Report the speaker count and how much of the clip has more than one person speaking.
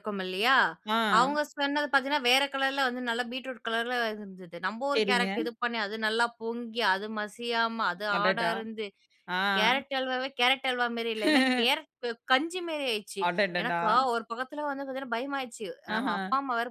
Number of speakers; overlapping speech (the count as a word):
two, about 11%